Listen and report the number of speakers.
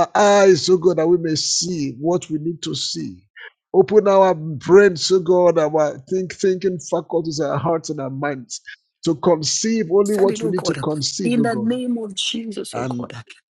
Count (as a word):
two